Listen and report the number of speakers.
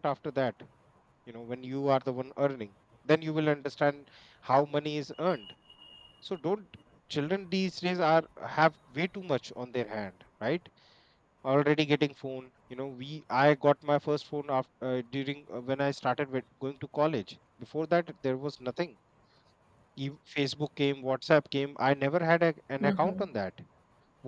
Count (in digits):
1